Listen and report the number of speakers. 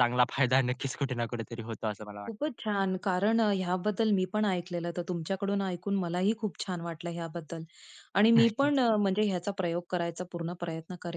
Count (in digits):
2